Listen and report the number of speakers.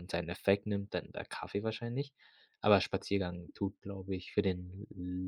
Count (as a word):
one